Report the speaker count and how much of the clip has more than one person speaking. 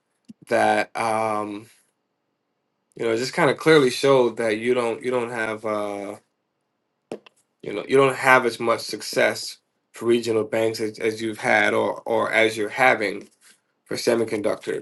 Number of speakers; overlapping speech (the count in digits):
1, no overlap